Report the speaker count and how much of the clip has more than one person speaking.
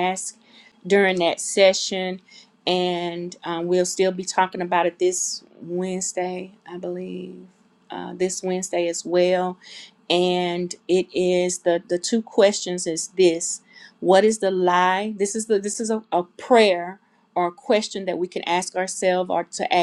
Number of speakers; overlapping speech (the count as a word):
one, no overlap